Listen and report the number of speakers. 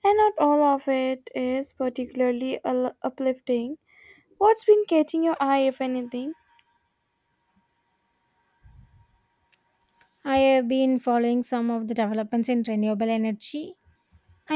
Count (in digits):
2